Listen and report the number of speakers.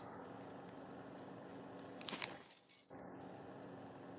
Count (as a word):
zero